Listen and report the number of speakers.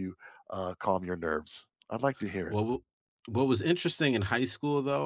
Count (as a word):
two